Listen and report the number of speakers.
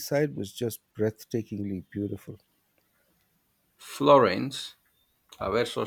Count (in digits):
2